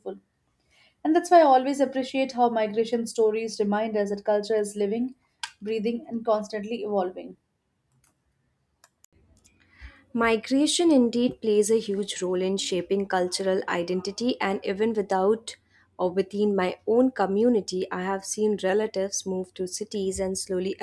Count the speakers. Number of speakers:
2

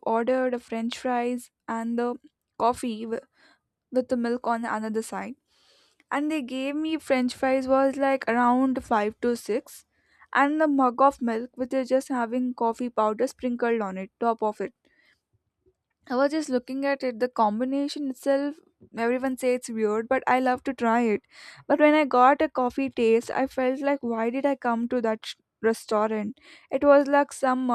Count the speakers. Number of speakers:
1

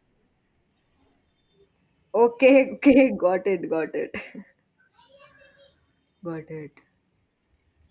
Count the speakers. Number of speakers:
1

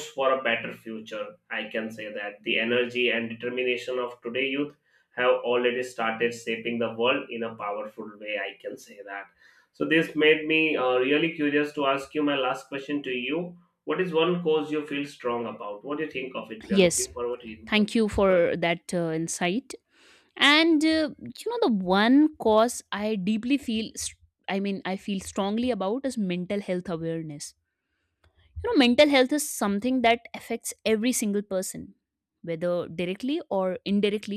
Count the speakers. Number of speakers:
2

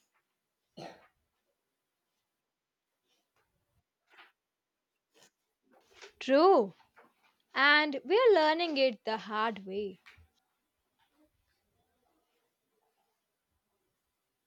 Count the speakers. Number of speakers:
1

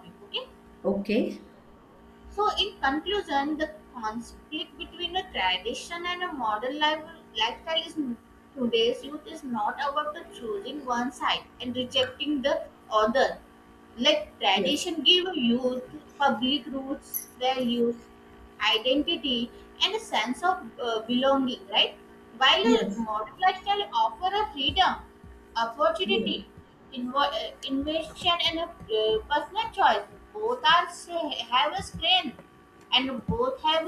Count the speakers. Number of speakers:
2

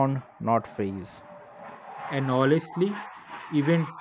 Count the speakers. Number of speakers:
2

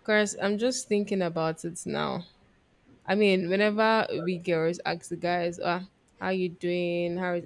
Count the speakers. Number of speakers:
1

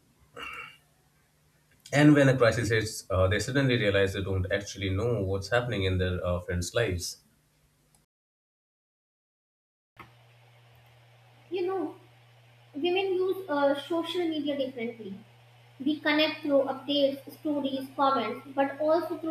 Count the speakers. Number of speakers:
2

